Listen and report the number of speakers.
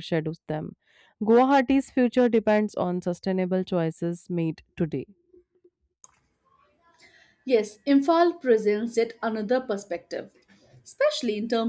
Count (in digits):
2